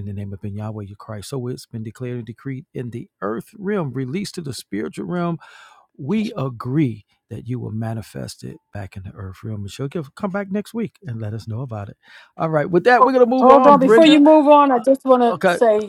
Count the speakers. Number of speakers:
2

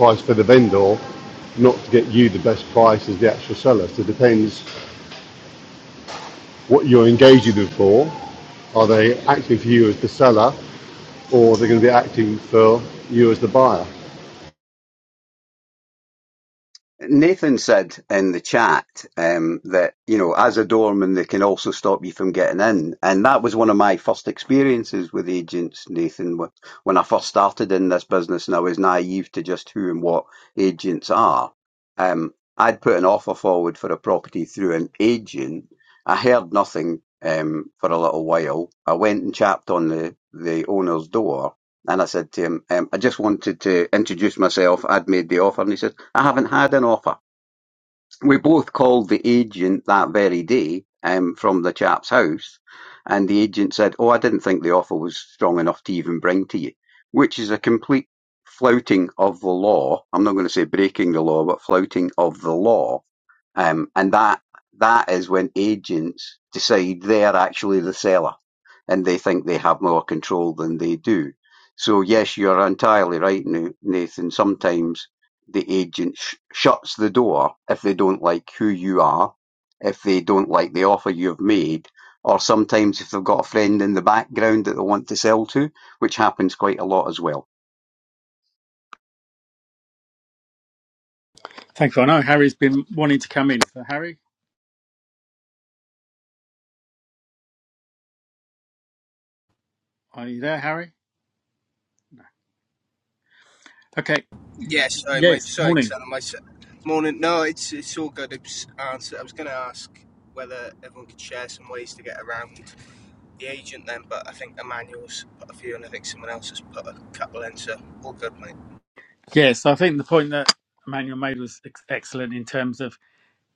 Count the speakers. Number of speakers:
4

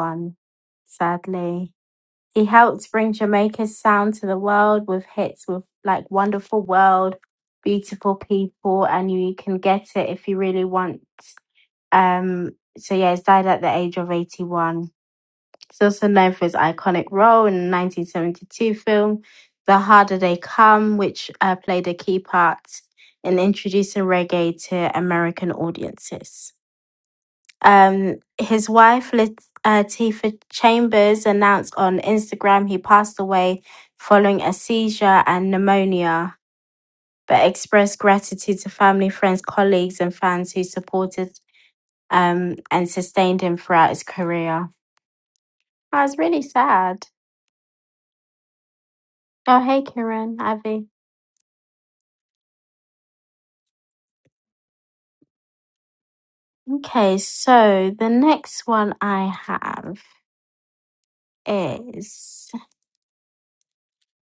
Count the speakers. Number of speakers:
1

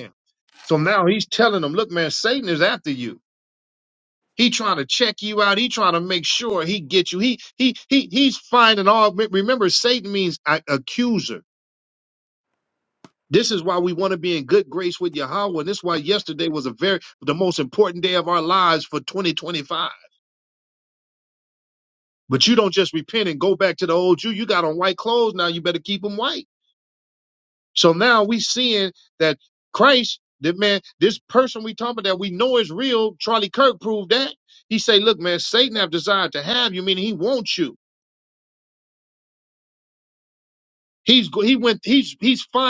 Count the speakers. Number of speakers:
1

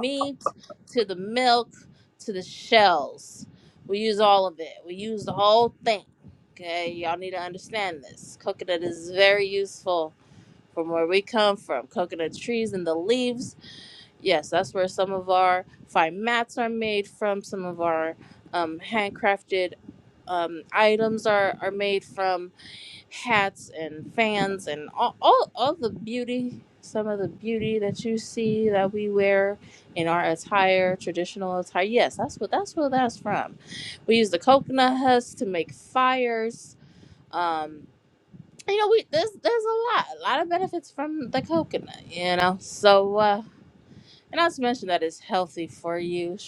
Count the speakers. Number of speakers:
1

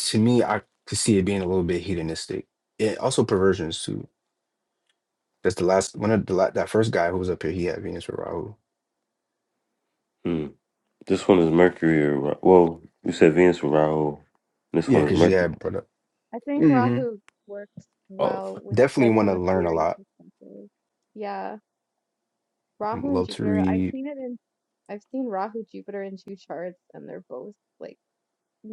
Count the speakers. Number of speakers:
3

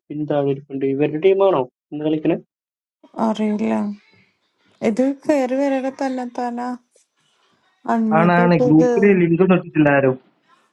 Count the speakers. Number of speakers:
3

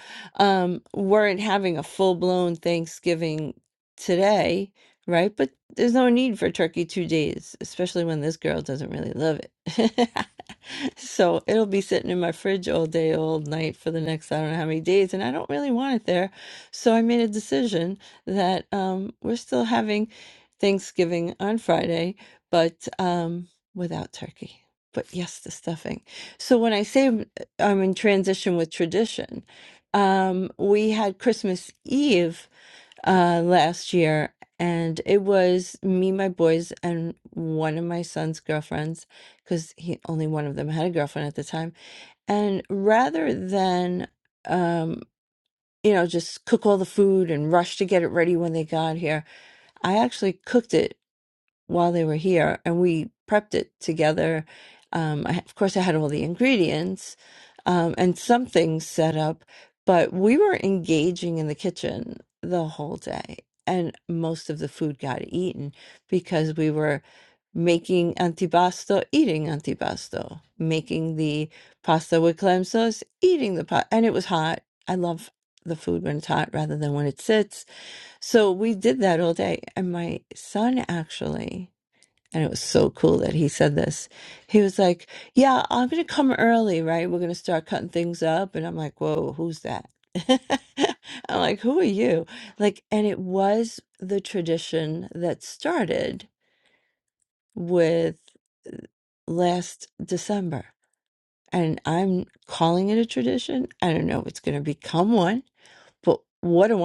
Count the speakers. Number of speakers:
1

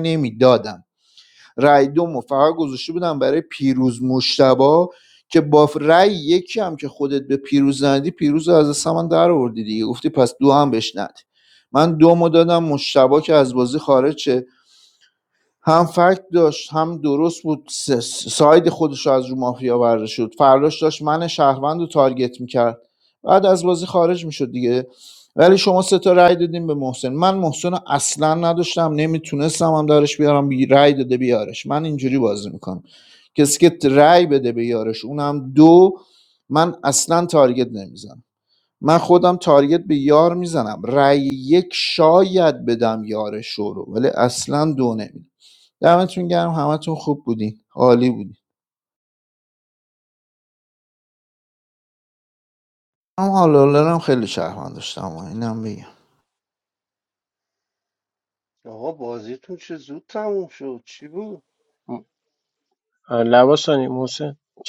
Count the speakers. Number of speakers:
3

